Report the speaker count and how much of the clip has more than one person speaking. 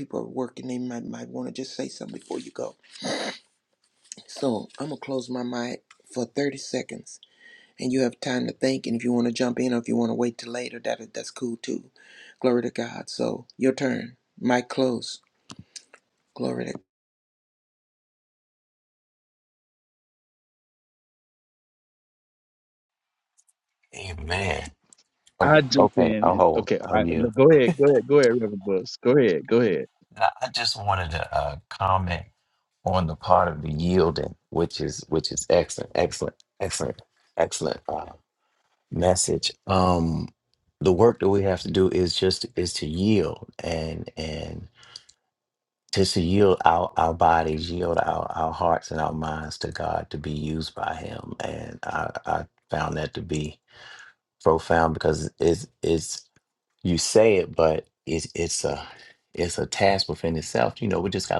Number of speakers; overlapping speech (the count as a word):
three, about 3%